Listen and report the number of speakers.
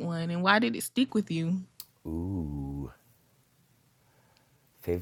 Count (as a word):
two